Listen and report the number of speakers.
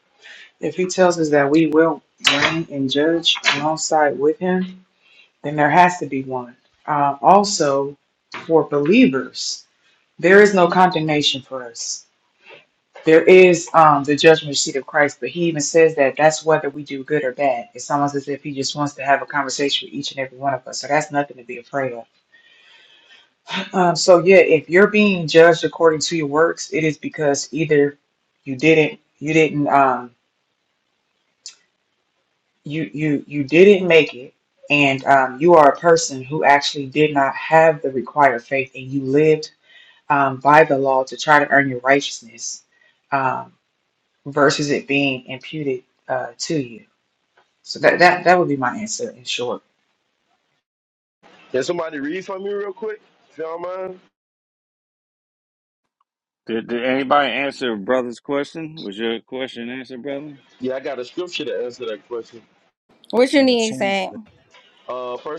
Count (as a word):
four